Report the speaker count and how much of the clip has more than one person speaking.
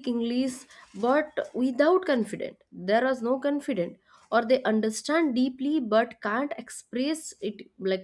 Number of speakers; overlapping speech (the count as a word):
one, no overlap